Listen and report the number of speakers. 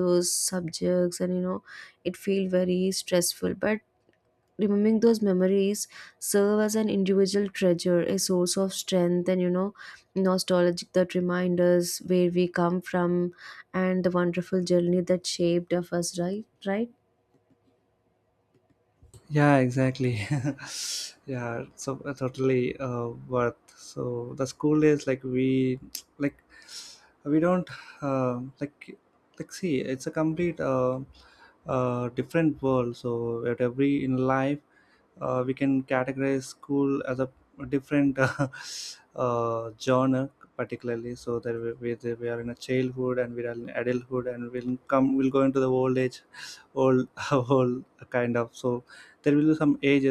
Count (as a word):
two